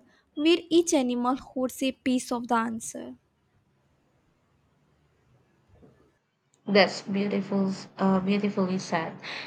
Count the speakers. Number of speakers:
two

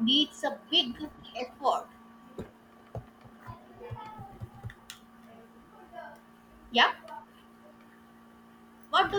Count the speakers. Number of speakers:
one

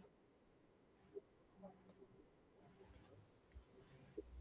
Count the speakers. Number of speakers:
zero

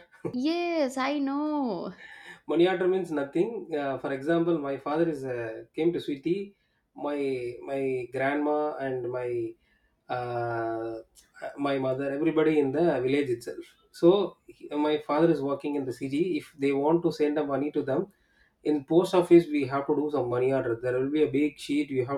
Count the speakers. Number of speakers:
two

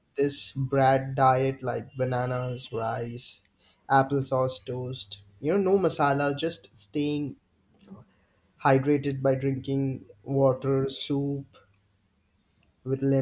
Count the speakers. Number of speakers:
one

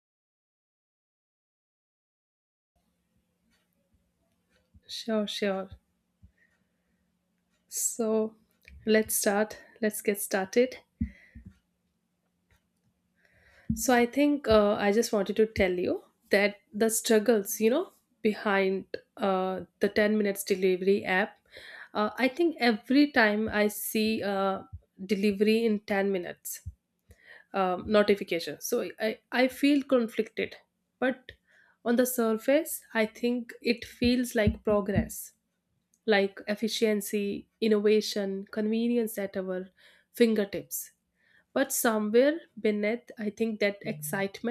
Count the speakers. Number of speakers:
one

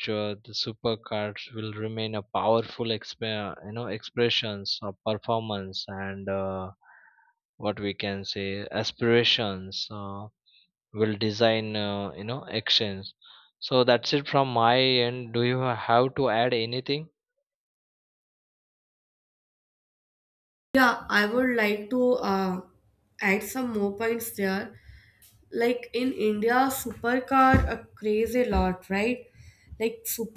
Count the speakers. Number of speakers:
two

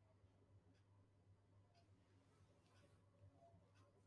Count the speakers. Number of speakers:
zero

